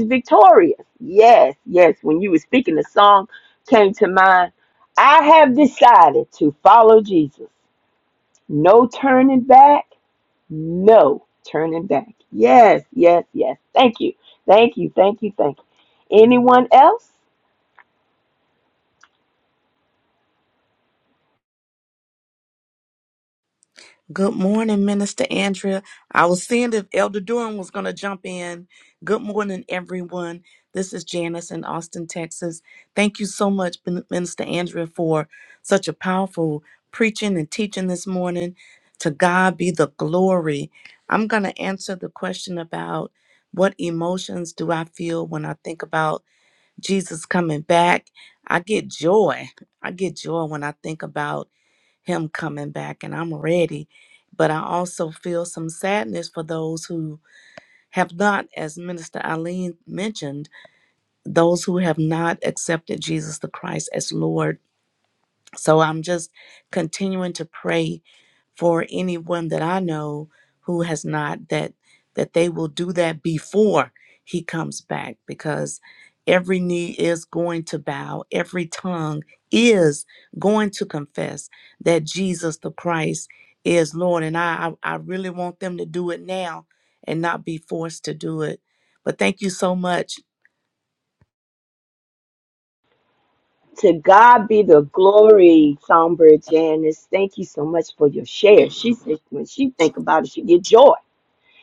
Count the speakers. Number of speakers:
2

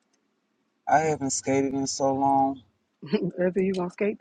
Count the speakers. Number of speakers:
2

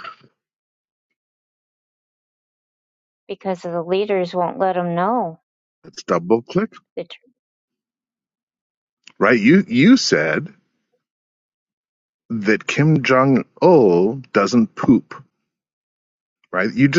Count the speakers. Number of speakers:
2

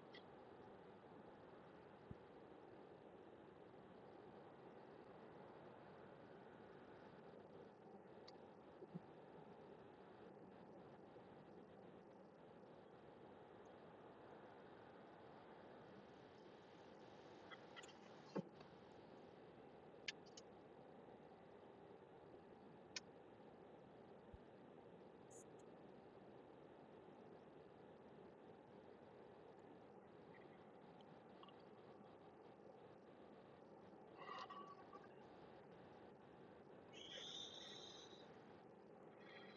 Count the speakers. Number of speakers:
0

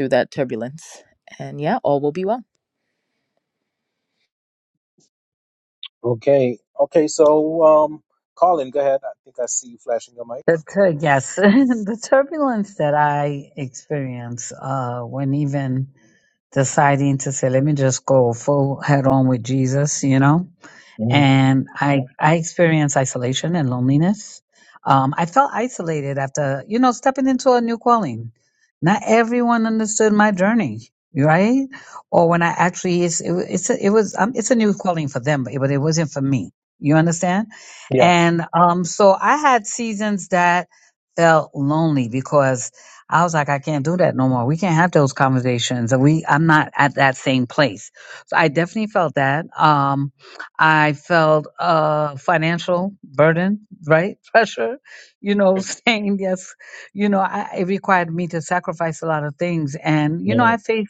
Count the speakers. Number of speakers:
3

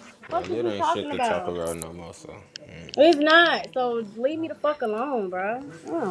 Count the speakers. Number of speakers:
2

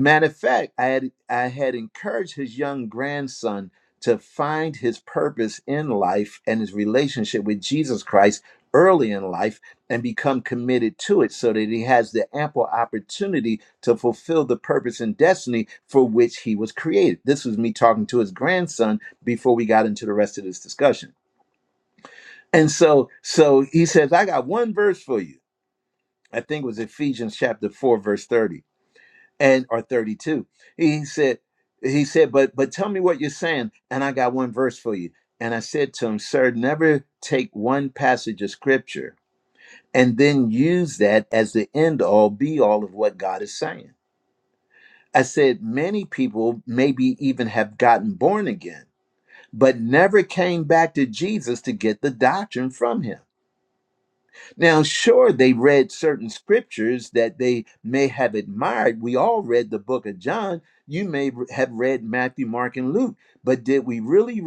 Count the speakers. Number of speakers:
1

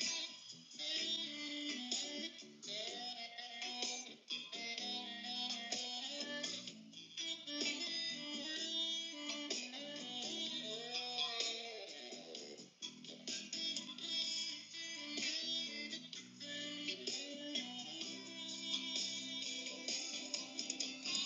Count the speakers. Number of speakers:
0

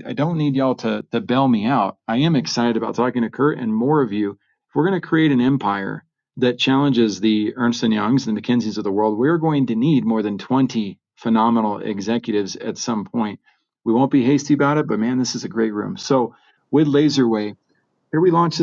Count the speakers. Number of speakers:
1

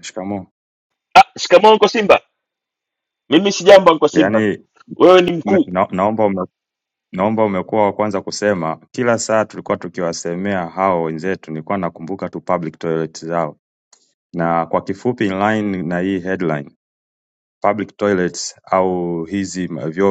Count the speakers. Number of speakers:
2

